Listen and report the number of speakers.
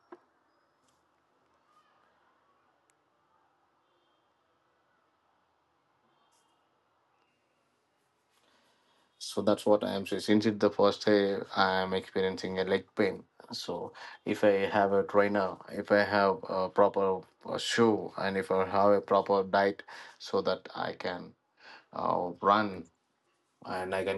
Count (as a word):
one